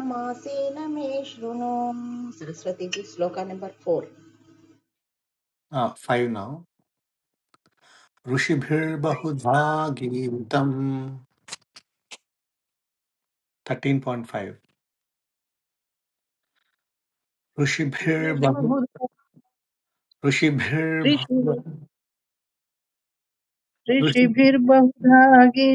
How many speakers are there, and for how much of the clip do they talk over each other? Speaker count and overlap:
three, about 4%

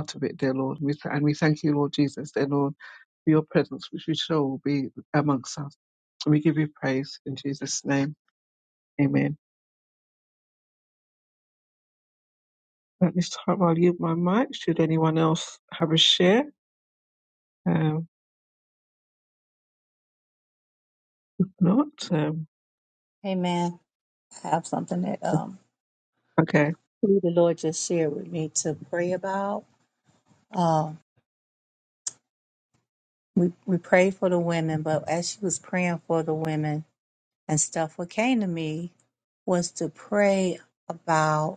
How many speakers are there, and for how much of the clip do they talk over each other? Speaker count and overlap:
two, no overlap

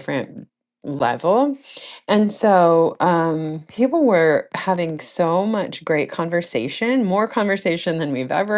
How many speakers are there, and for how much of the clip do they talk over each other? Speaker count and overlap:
one, no overlap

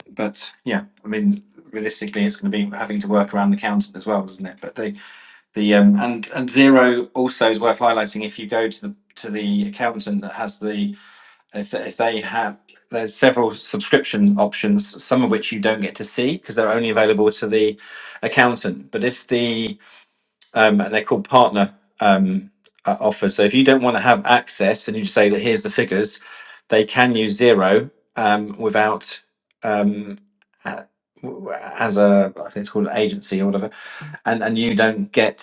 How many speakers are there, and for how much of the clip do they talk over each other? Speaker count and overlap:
one, no overlap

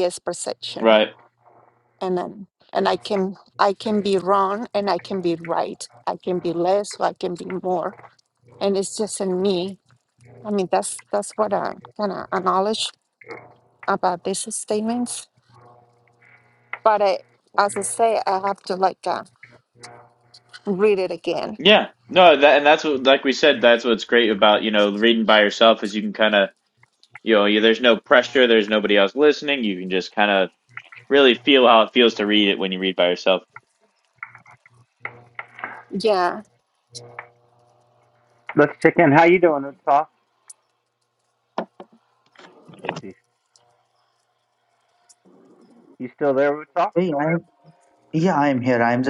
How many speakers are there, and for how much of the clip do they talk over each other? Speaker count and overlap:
four, under 1%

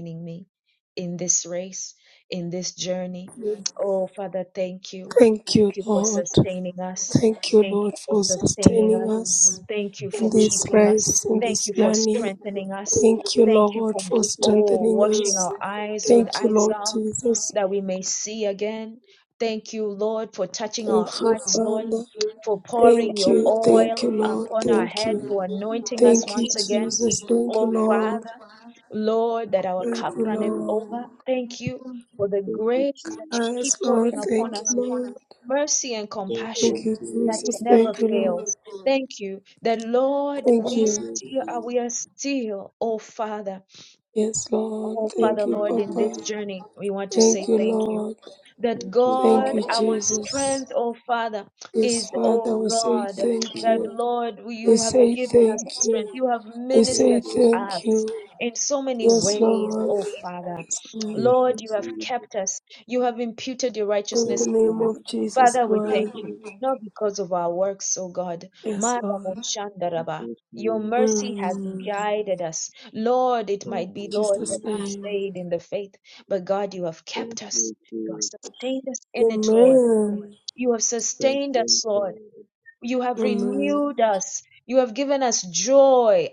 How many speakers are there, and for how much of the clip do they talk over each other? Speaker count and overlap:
three, about 43%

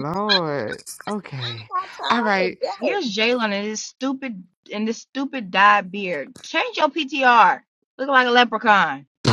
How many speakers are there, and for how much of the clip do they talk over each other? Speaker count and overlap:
three, about 7%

